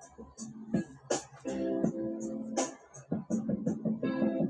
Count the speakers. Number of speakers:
zero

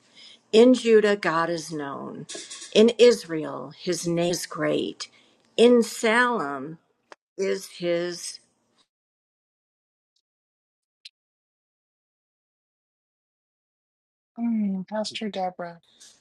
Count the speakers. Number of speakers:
two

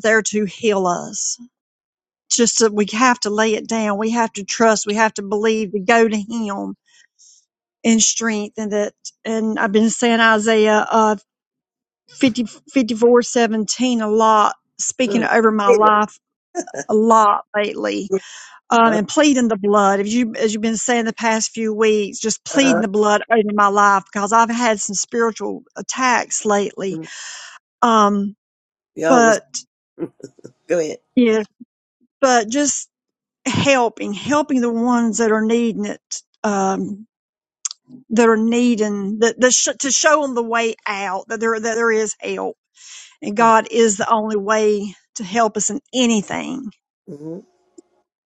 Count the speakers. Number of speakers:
two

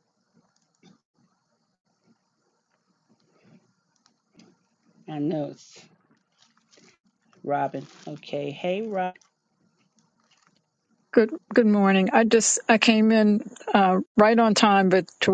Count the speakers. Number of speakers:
two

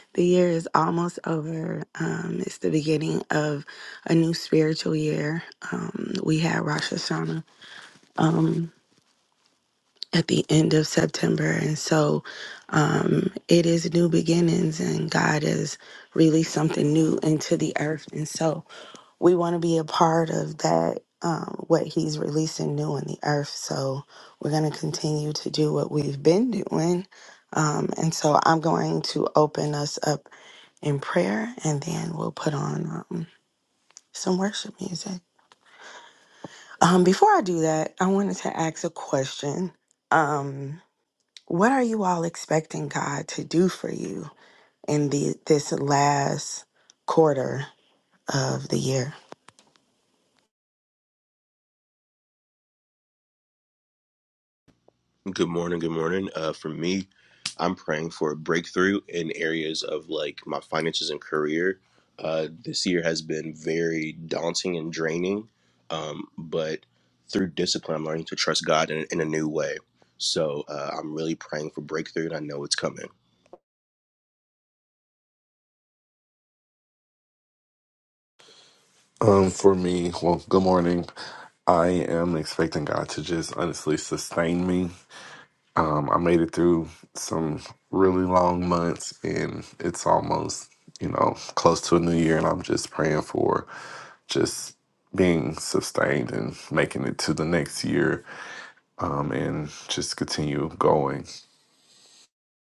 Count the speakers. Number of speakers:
three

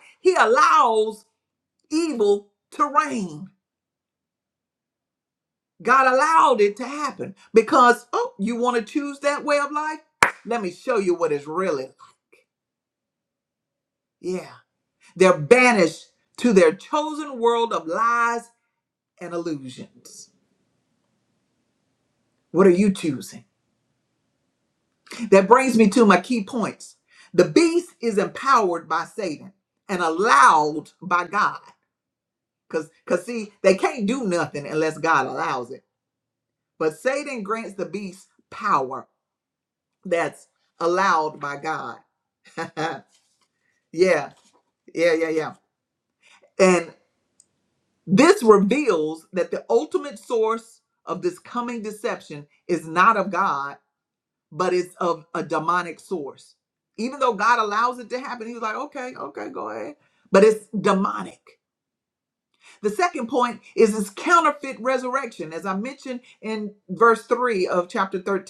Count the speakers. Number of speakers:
one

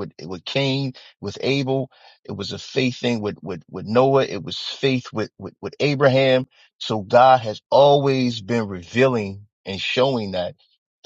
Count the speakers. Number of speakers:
one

